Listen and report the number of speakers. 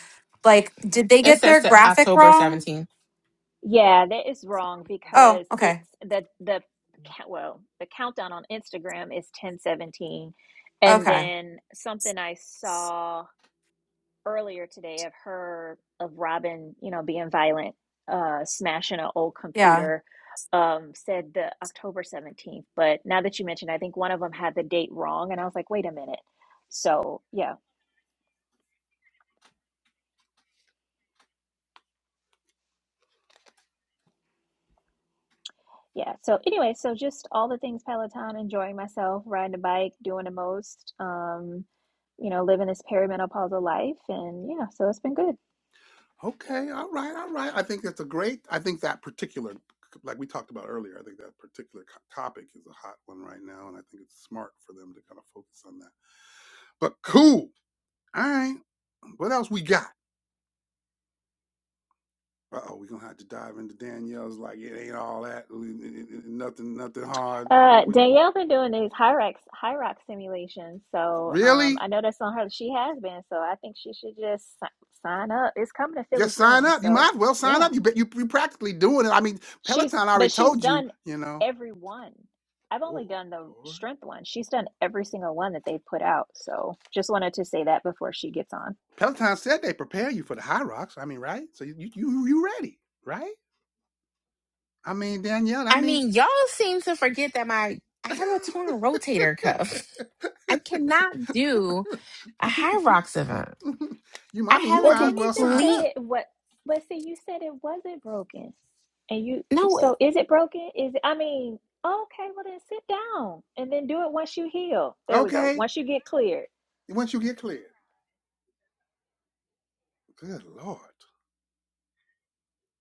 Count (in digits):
4